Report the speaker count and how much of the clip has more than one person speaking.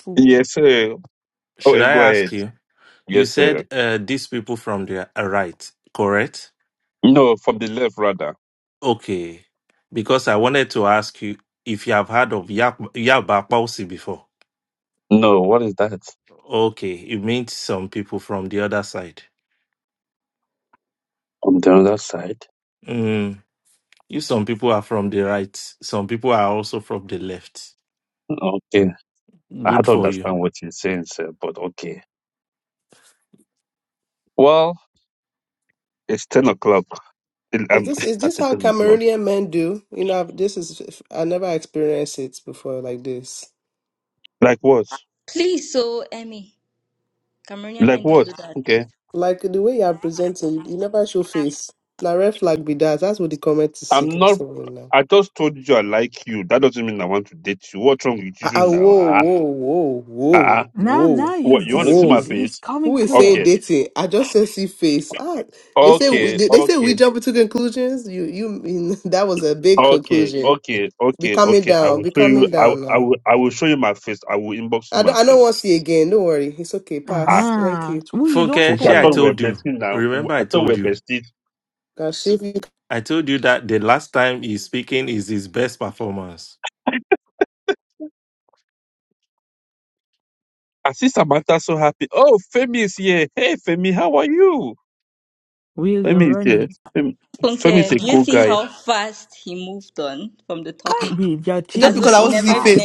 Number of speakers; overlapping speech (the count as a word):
five, about 17%